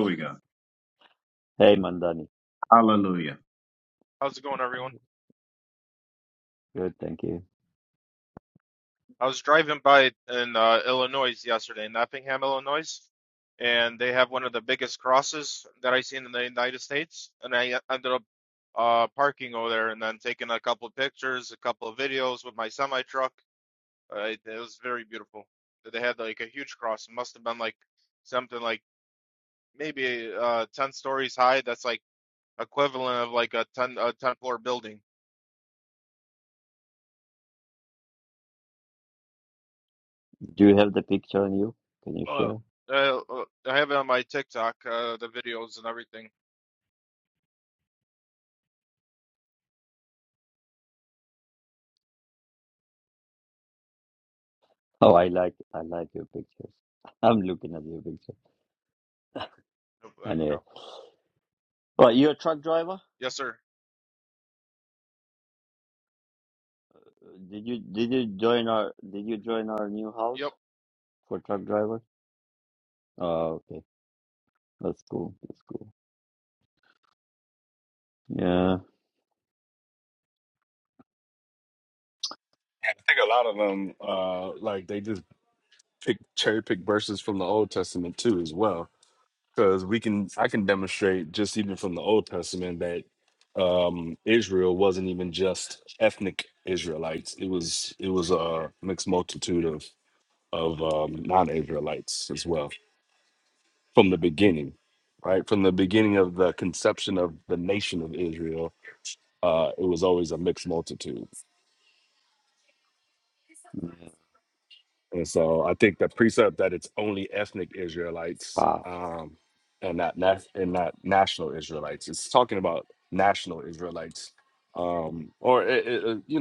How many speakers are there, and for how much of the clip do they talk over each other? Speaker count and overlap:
4, under 1%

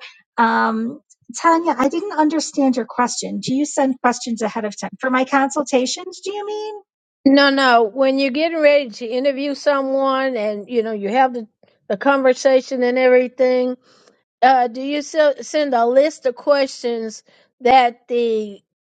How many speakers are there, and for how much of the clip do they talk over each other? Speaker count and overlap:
2, no overlap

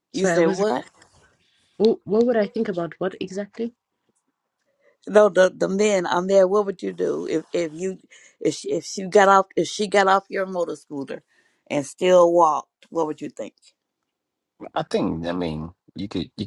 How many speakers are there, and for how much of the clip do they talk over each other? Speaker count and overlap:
3, about 3%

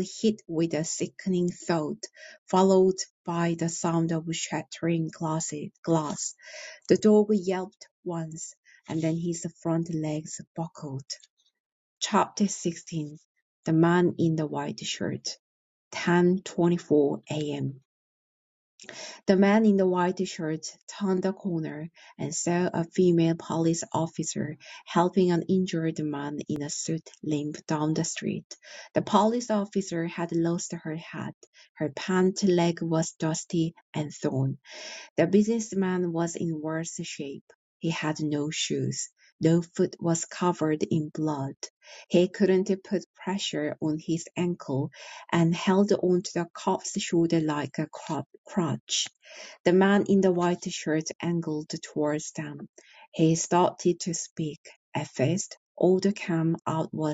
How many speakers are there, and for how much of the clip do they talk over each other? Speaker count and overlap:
1, no overlap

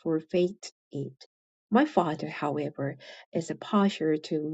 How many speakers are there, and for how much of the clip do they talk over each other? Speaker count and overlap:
1, no overlap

